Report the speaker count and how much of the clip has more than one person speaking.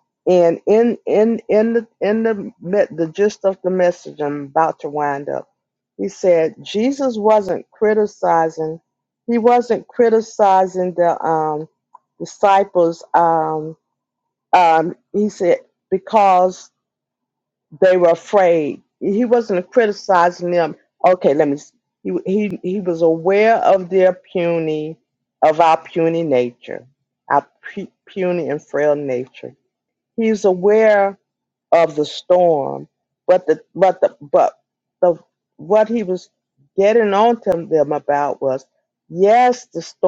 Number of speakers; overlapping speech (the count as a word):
one, no overlap